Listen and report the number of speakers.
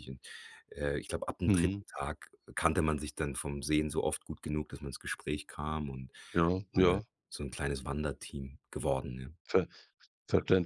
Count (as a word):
two